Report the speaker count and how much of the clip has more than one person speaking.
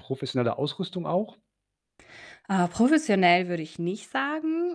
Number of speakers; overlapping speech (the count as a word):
two, no overlap